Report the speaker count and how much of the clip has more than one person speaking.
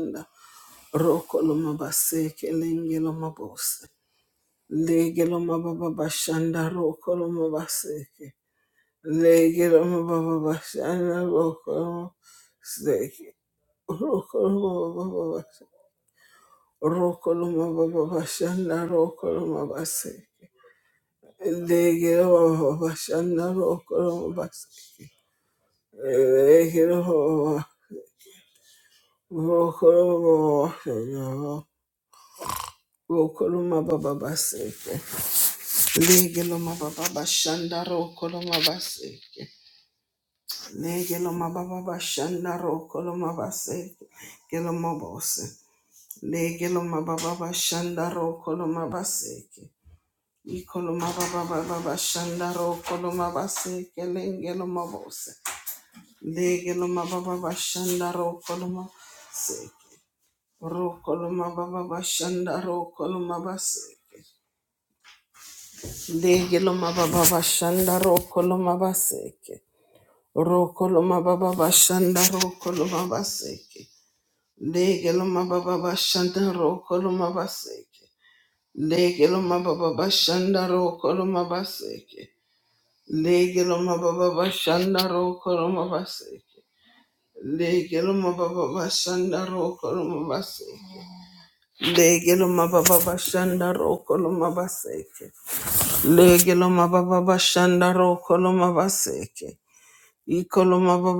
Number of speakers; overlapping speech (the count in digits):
1, no overlap